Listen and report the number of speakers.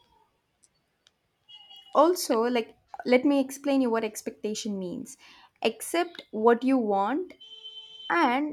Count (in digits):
1